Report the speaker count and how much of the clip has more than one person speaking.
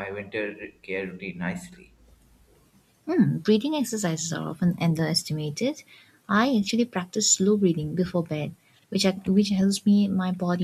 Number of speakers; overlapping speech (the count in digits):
2, no overlap